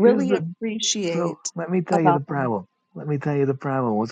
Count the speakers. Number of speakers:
2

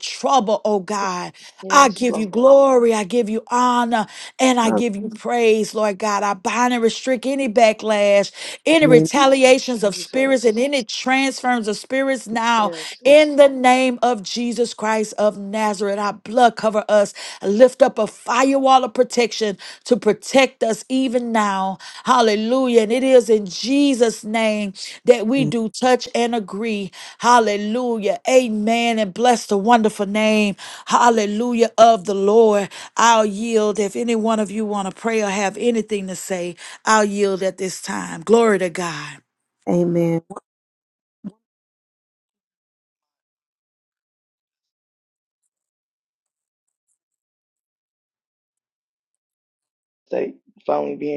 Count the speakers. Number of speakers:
3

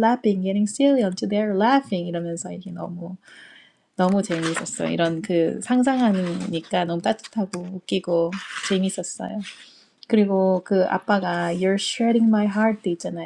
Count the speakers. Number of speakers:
1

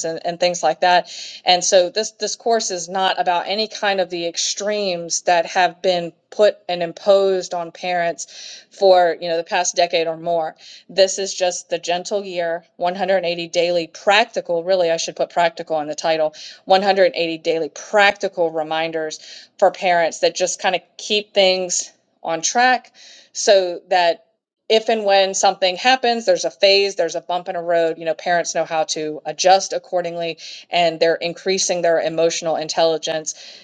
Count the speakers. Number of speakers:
1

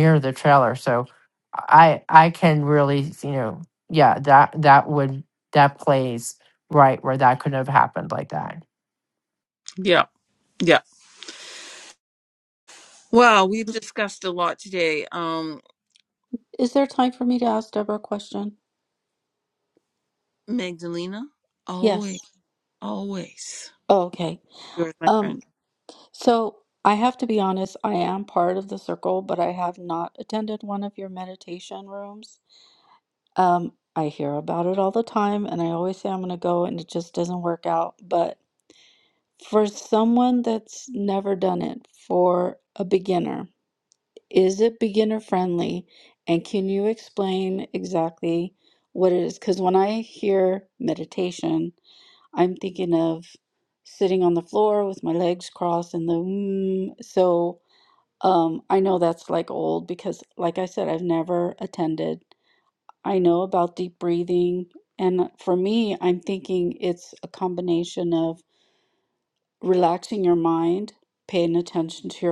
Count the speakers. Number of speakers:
3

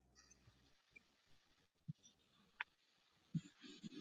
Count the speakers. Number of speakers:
0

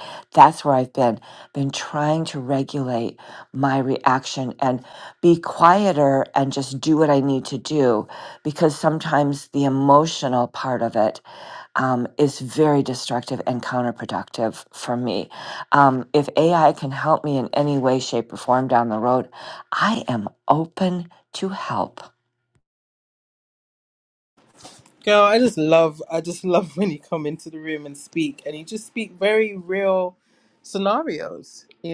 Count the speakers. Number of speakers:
2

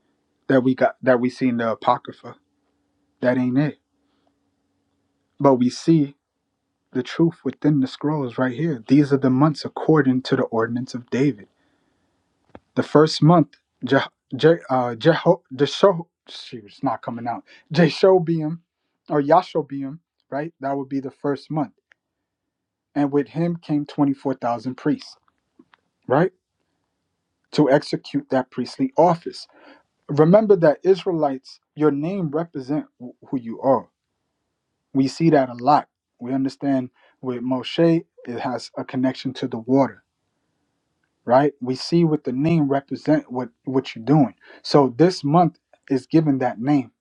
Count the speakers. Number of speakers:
1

